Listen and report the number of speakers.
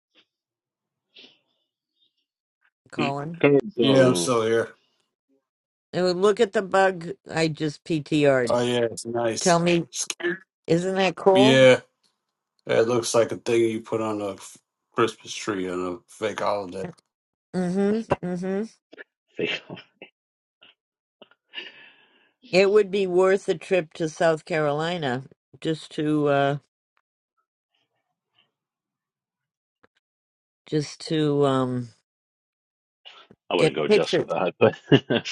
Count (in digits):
3